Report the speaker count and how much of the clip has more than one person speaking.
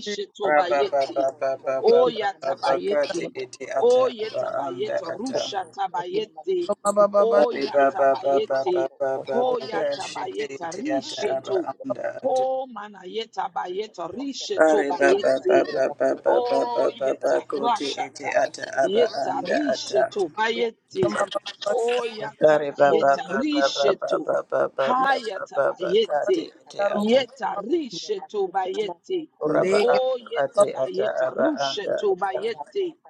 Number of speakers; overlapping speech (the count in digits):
3, about 47%